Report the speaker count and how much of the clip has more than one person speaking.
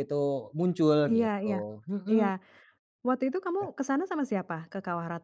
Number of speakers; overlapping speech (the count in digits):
2, about 16%